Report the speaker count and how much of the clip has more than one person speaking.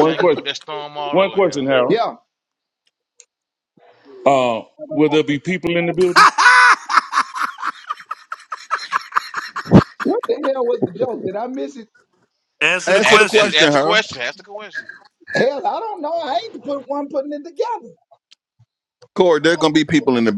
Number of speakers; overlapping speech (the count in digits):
5, about 13%